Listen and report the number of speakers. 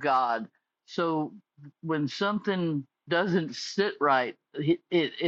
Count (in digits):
1